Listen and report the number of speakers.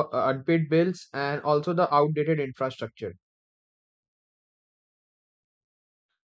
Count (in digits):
1